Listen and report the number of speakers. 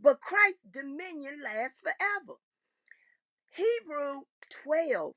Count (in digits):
1